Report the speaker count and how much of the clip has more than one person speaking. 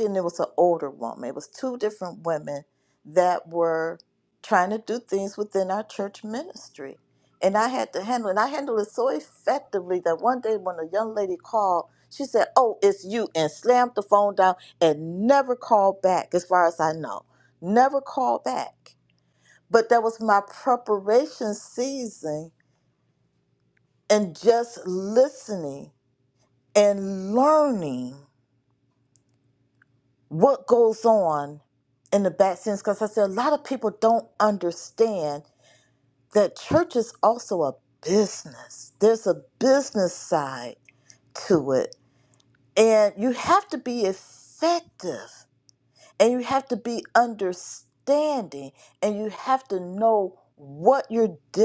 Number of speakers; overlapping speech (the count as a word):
one, no overlap